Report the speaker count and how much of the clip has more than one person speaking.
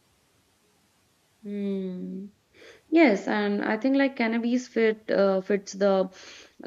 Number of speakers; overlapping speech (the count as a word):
one, no overlap